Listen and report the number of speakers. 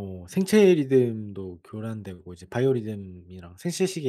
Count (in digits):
1